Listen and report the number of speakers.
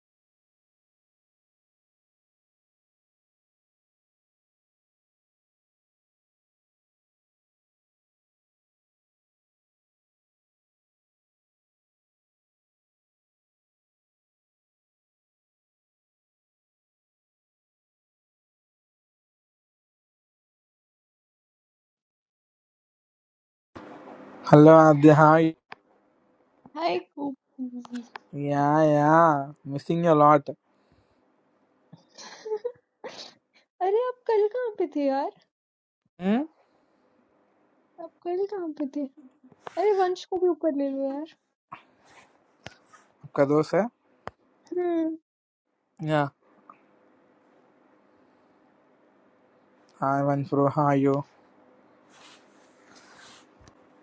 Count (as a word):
two